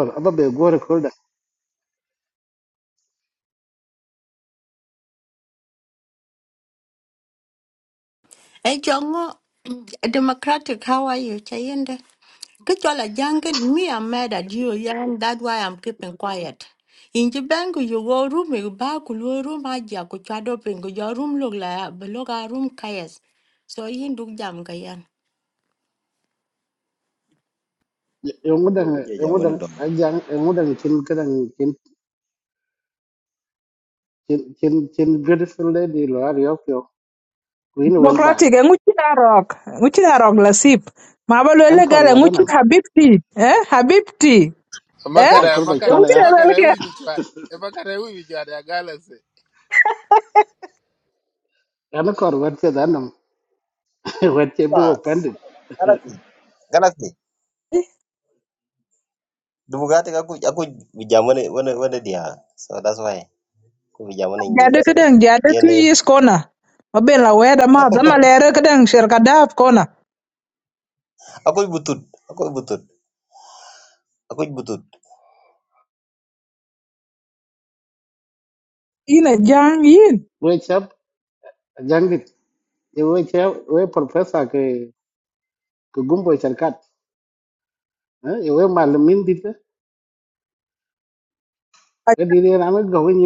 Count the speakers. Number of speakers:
five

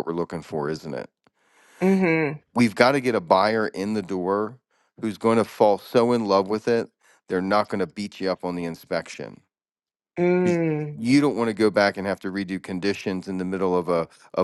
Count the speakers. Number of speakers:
two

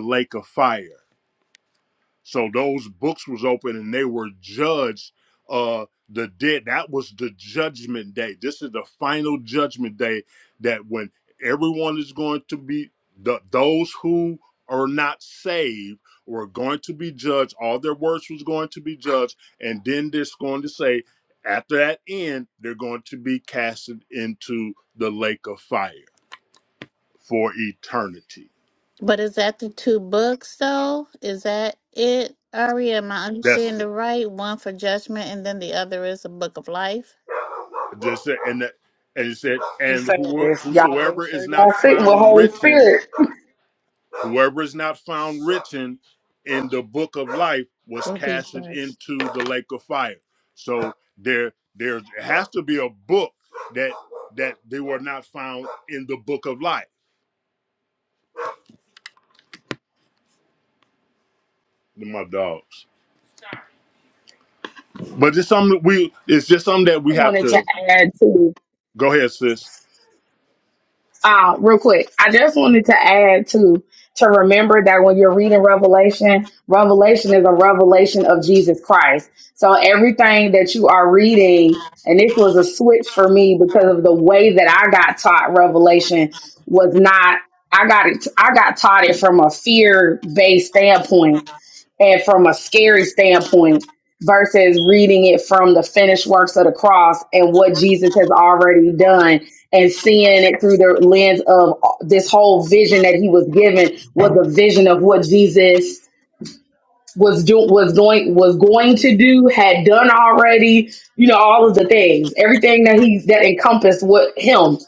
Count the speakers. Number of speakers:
three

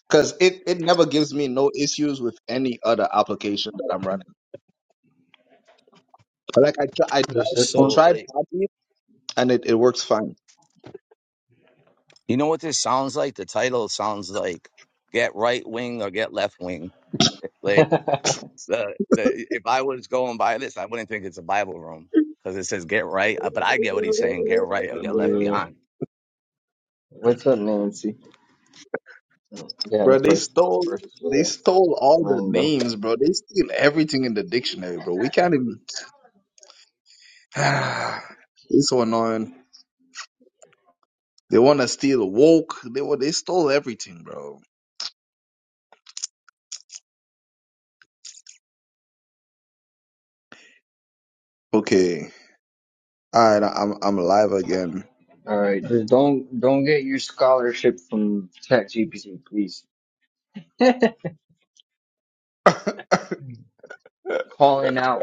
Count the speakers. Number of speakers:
three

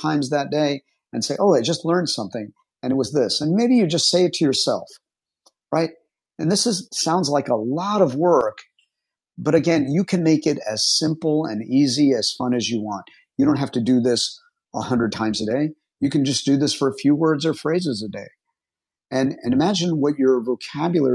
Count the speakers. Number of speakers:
one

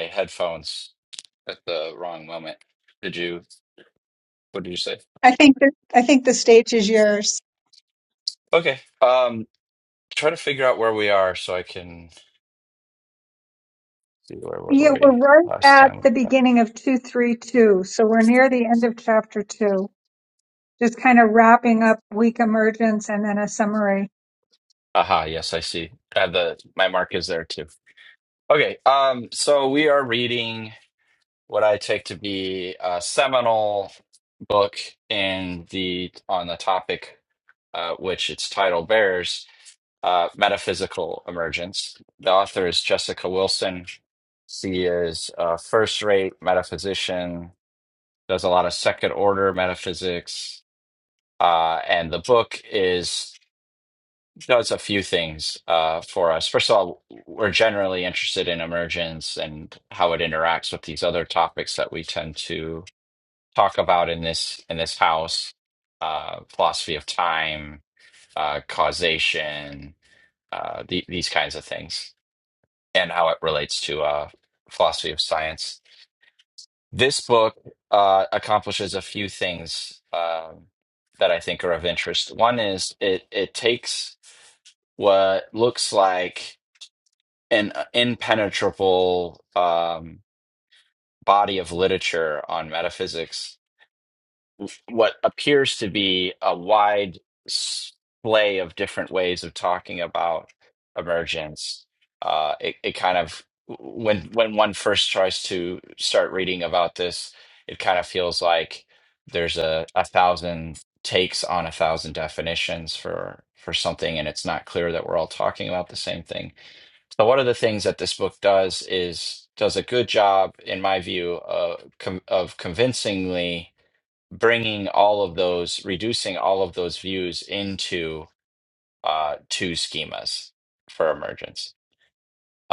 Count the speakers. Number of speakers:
two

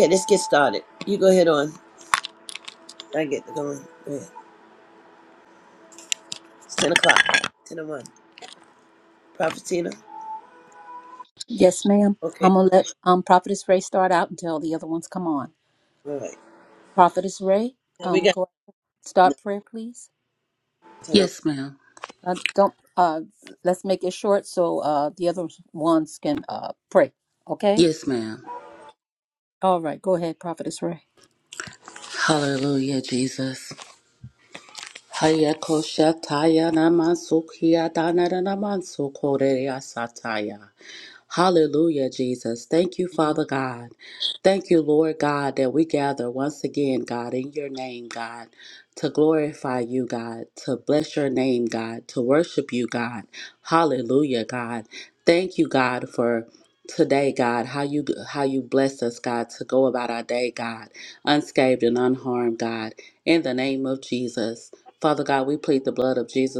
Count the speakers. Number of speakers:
three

